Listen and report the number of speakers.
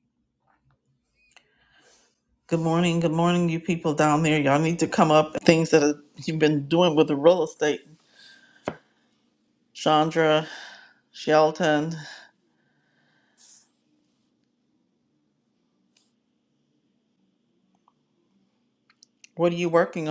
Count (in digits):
1